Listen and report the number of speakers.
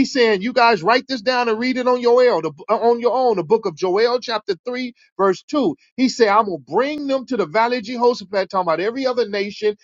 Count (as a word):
one